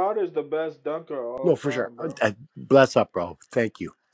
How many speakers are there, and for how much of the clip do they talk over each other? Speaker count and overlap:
2, about 17%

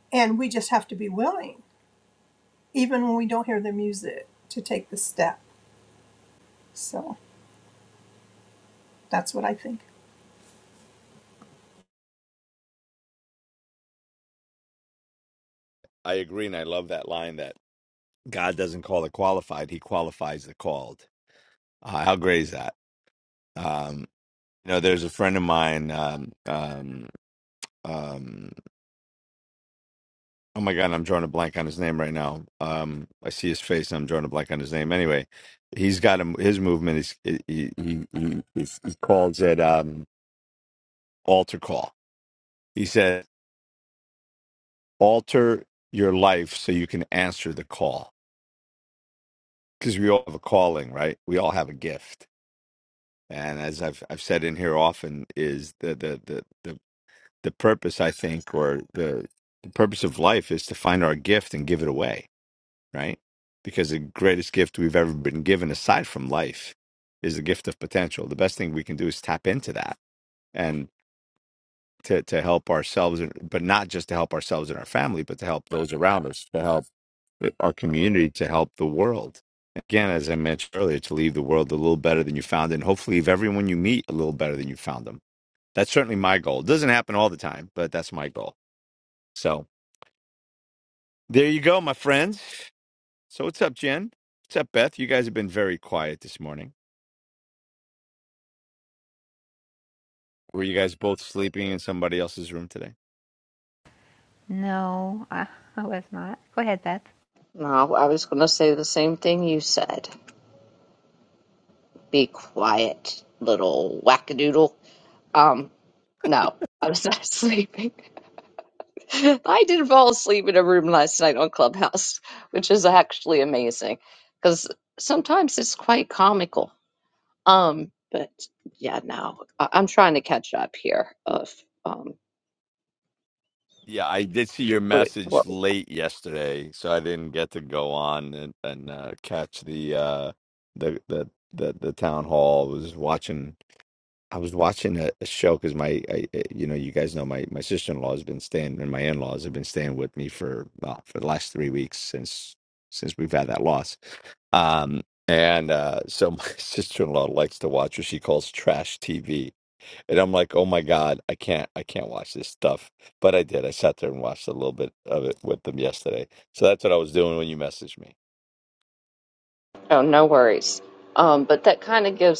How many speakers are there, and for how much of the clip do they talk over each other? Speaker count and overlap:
4, under 1%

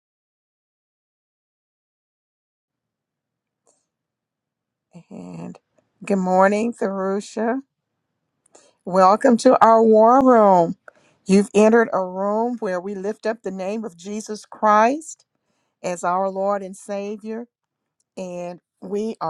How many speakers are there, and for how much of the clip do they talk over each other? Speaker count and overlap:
1, no overlap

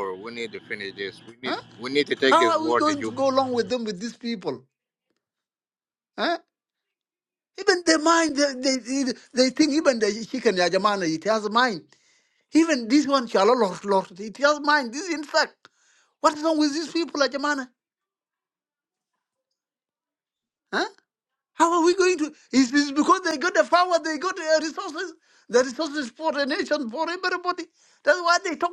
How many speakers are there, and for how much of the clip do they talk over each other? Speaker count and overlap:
2, about 4%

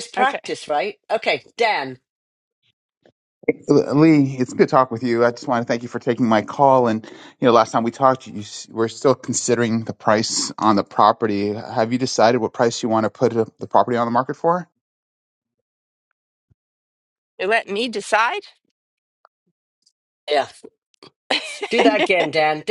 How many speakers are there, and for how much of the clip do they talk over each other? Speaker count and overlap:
3, about 1%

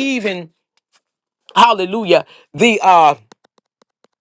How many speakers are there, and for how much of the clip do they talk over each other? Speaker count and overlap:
1, no overlap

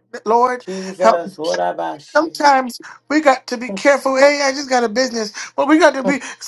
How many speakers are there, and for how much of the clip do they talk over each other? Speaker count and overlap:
2, about 7%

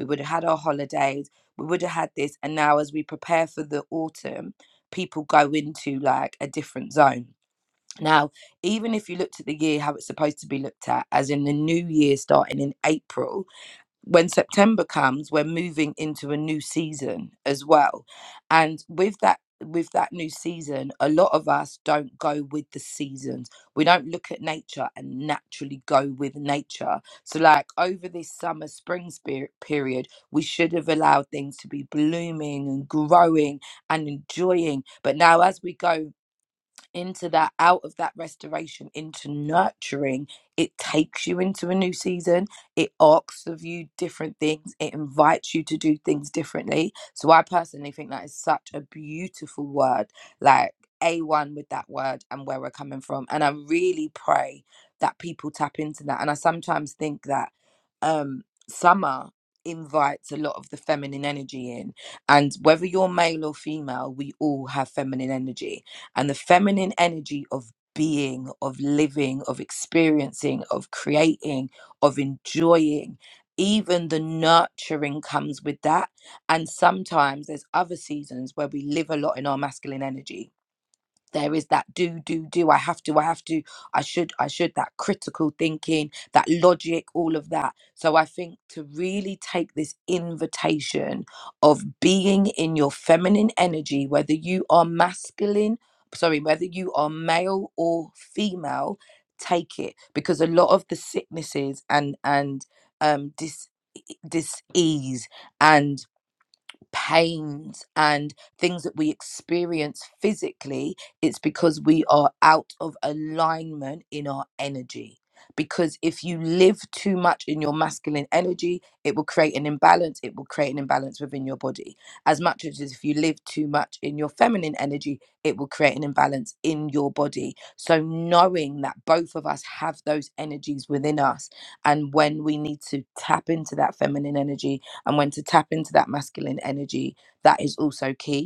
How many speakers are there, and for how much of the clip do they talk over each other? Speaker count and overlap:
1, no overlap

